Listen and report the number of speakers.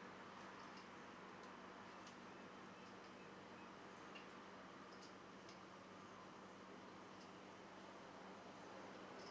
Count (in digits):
0